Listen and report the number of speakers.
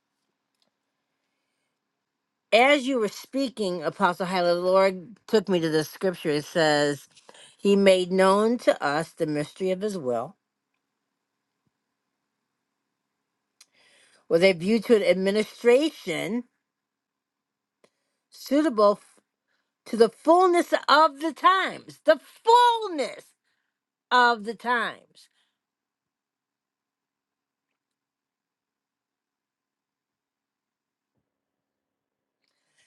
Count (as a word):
one